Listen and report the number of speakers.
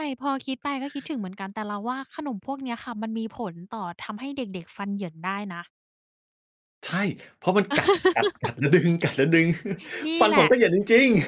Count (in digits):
2